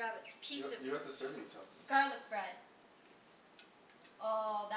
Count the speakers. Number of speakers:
two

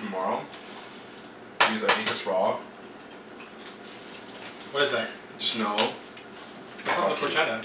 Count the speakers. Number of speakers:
two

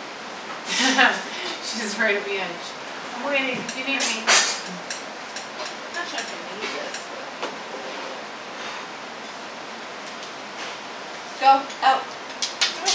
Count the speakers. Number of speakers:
two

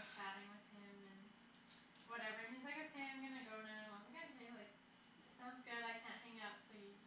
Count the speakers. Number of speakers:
one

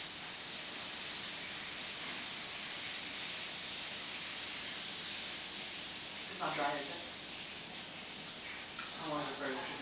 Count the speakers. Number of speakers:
one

